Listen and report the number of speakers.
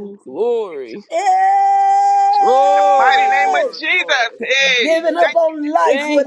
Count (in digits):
3